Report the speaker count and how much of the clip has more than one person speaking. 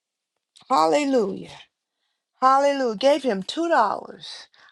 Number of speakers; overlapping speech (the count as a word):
one, no overlap